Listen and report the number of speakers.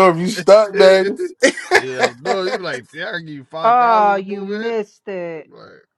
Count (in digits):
3